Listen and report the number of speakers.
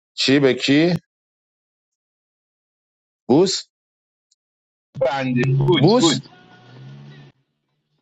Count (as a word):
two